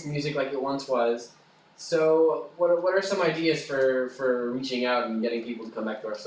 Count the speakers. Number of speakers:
1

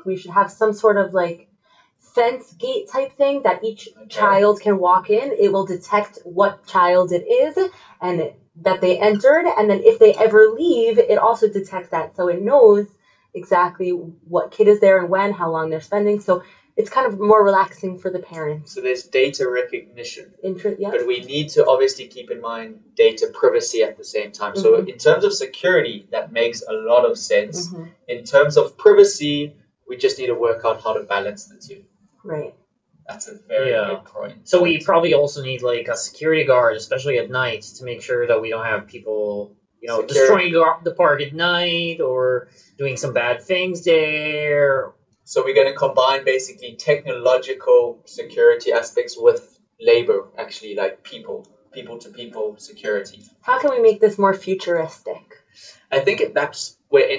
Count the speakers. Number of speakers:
3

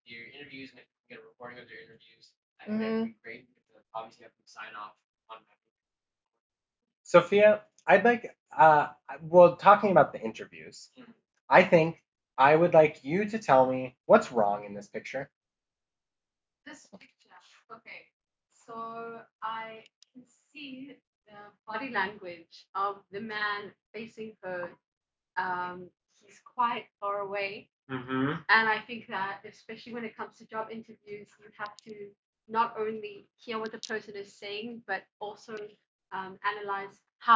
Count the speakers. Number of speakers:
3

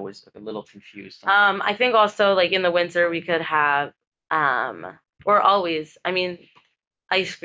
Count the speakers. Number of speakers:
2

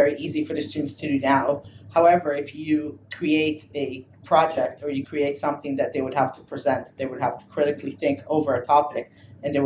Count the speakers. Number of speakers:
1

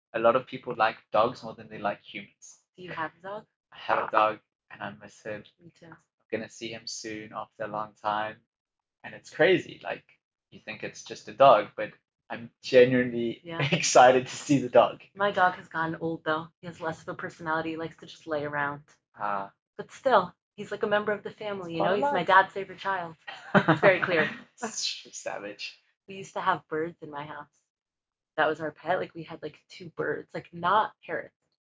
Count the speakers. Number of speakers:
2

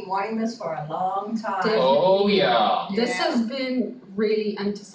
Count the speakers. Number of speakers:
3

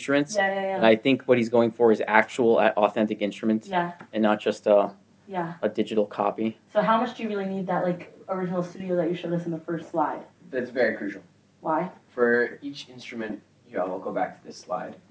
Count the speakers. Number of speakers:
3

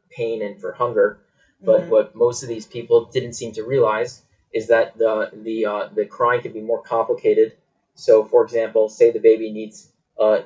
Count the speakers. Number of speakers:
1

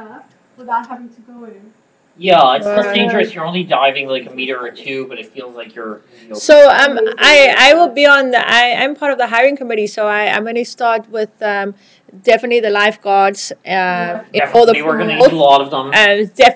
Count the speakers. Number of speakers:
3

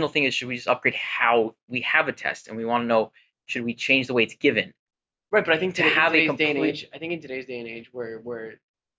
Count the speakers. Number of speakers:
2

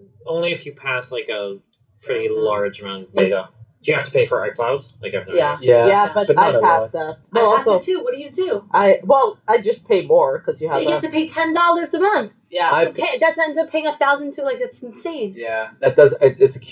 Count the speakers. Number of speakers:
4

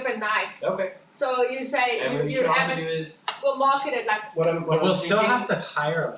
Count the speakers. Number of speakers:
3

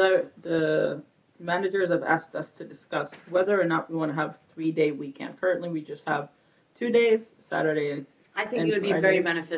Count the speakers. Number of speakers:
2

